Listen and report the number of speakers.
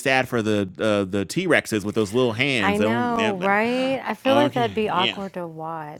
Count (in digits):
2